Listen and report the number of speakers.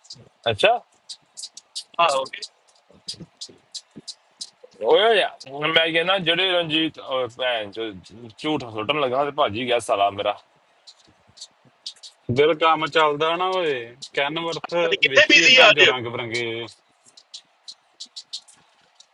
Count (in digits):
3